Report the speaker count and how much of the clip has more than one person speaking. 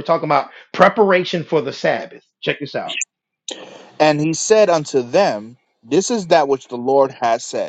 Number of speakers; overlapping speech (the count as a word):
two, no overlap